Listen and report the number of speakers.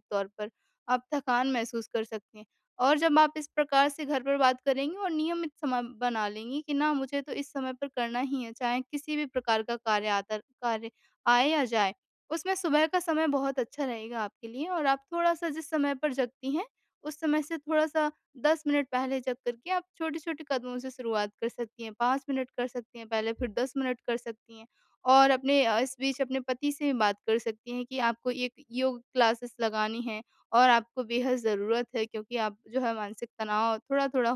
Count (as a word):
one